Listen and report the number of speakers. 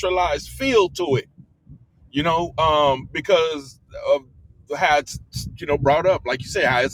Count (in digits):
1